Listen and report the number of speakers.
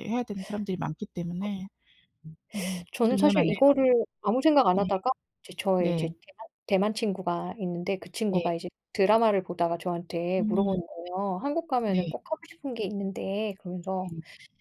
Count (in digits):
2